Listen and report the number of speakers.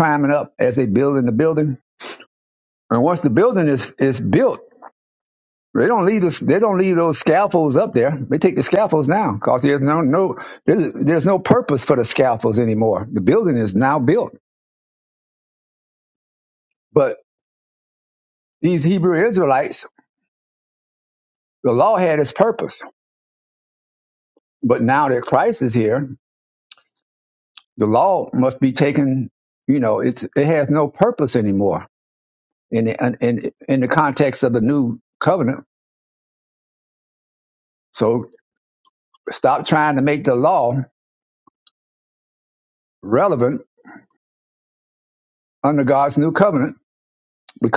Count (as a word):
one